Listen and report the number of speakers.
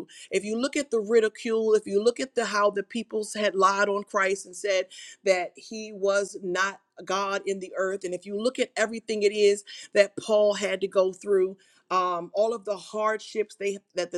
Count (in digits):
1